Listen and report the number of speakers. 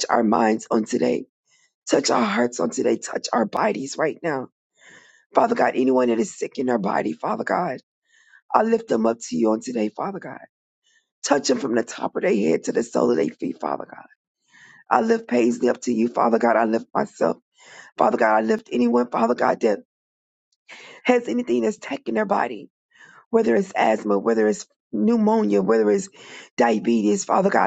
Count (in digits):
1